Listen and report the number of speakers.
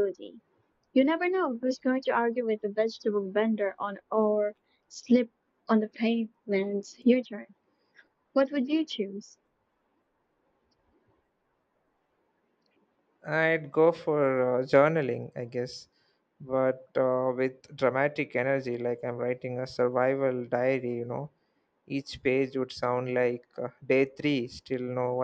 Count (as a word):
two